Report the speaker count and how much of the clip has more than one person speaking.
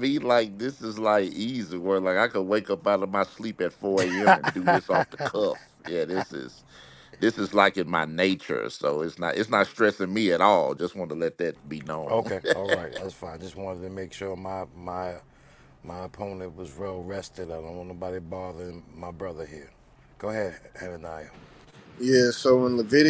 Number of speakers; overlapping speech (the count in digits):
3, about 1%